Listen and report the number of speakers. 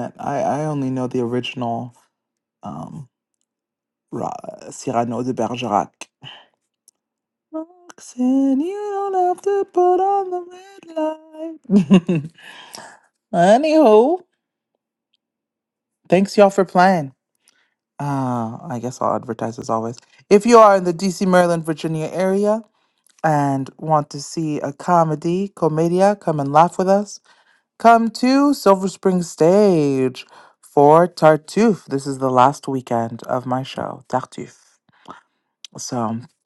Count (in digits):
1